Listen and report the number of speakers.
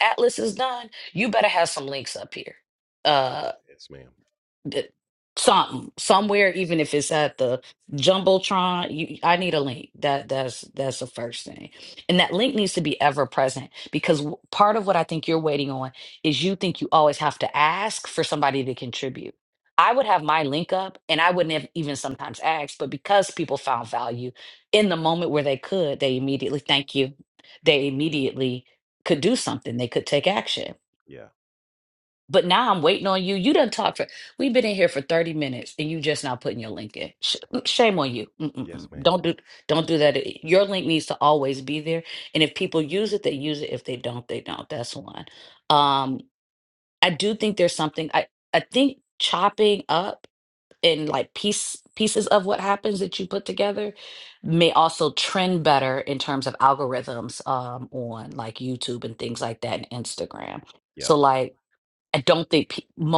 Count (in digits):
2